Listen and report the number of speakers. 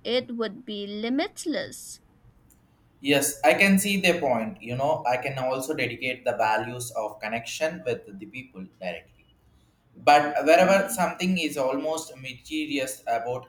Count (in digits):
2